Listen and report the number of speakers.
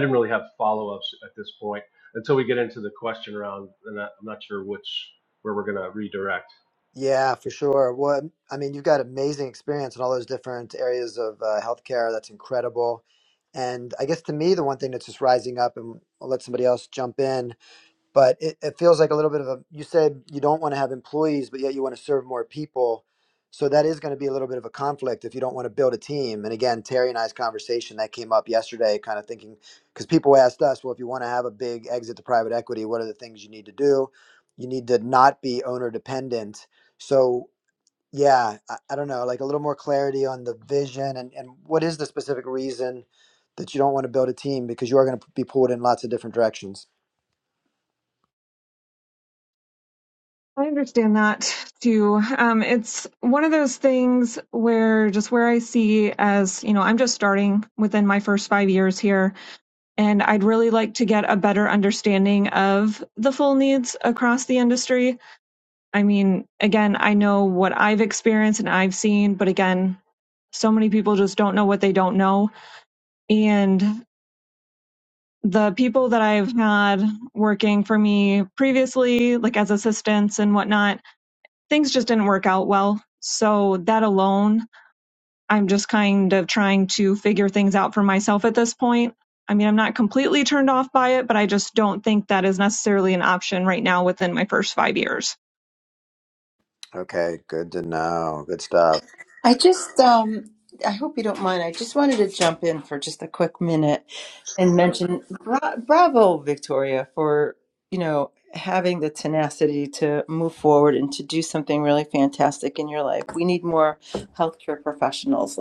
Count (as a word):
four